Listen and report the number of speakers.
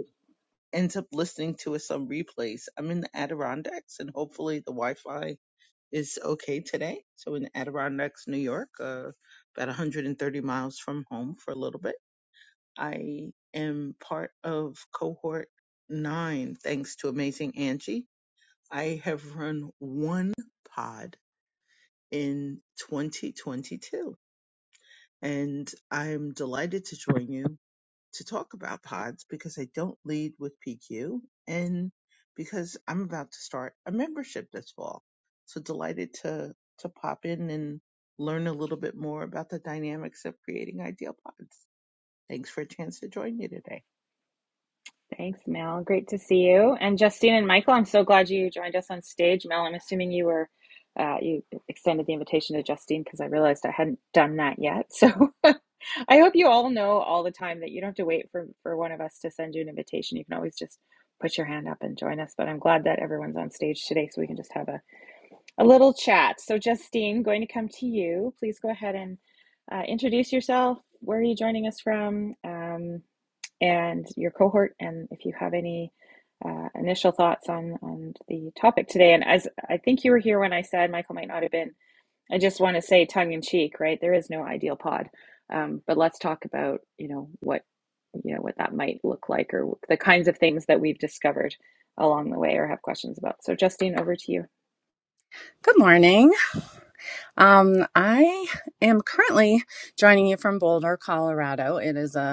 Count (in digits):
3